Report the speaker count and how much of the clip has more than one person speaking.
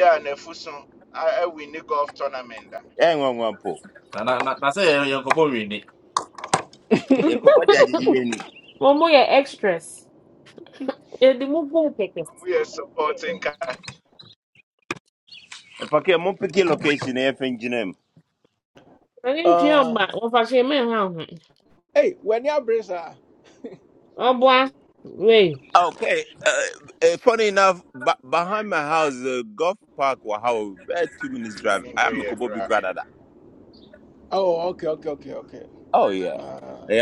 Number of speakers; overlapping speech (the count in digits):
5, about 4%